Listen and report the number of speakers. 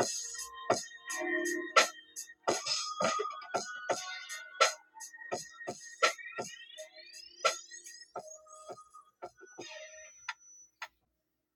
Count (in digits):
0